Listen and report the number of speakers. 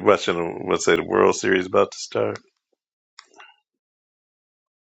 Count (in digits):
1